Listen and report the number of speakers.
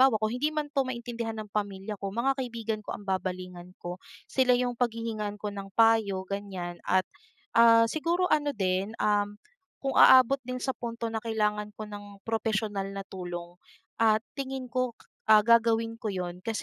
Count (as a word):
one